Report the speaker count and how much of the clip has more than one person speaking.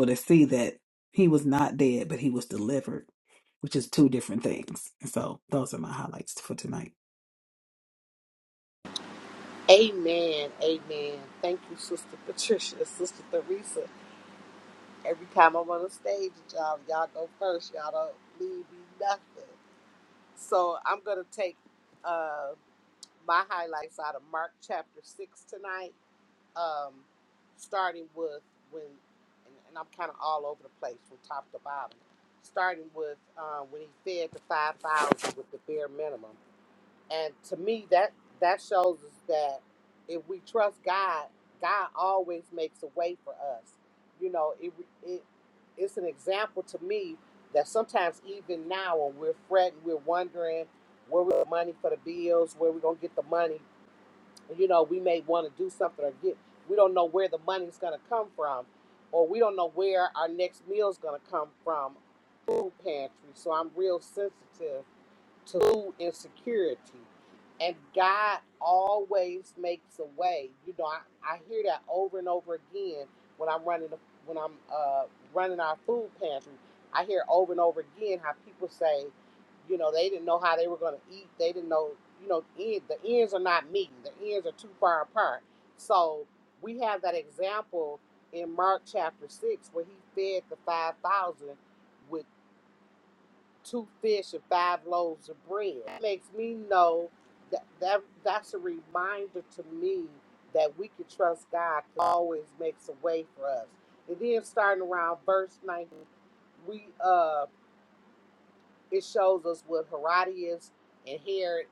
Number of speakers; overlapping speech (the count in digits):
2, no overlap